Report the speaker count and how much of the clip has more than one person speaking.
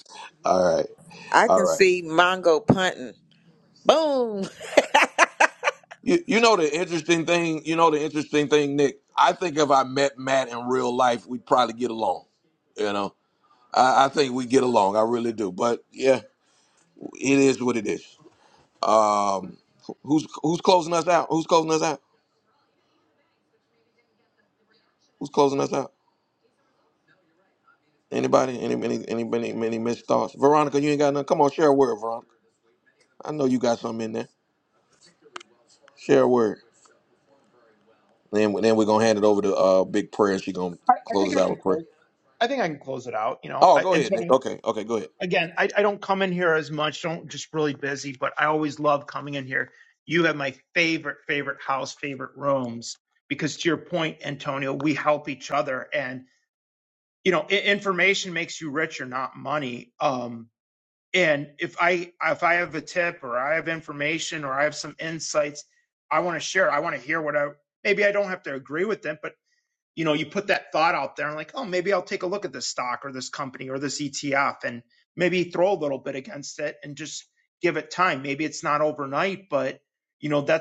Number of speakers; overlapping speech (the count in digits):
3, about 2%